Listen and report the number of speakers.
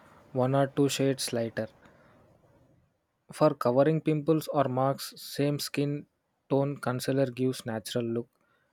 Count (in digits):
1